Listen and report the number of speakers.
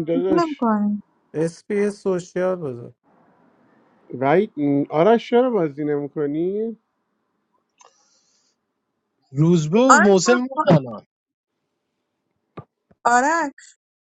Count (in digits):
4